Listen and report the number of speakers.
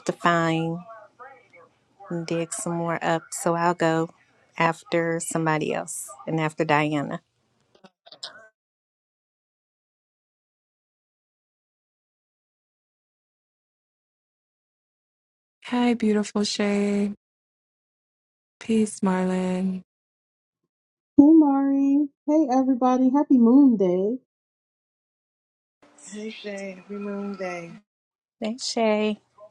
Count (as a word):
four